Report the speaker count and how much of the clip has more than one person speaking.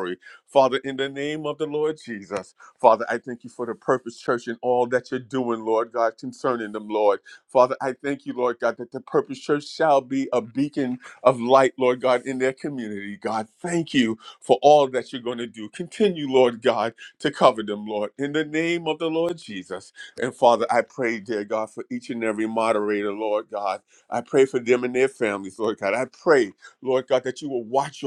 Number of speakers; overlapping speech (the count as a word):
one, no overlap